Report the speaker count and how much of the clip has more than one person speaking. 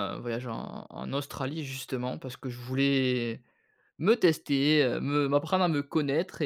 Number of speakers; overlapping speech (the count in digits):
1, no overlap